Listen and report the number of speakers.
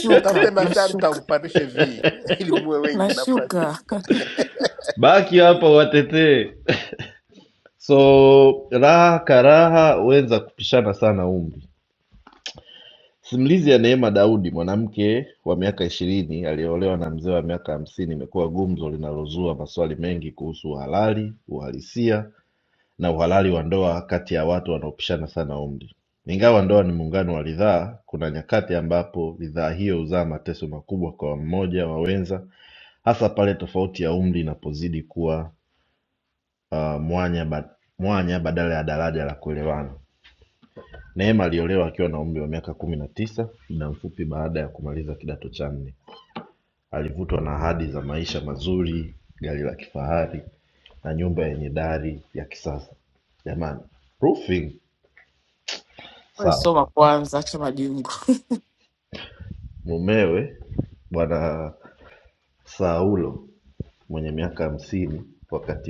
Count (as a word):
three